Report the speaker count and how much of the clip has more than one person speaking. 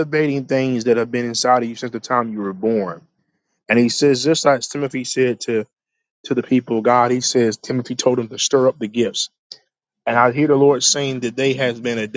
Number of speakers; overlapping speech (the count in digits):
1, no overlap